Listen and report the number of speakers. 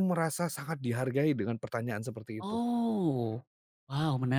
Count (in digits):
2